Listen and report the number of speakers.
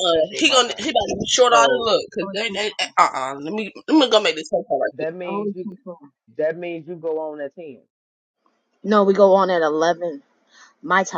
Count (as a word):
three